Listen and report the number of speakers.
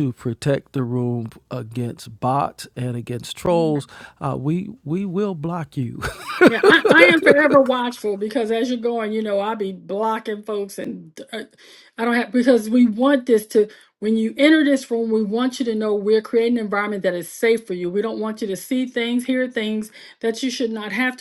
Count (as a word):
two